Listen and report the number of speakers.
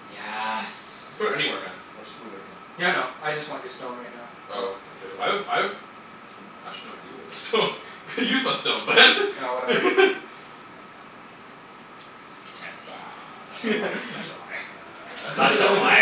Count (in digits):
3